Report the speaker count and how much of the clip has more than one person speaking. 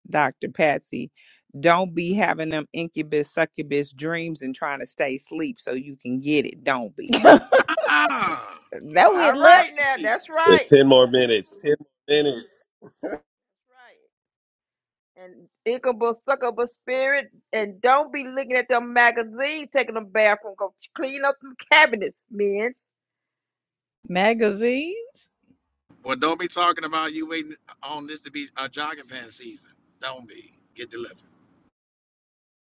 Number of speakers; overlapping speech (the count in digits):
5, about 5%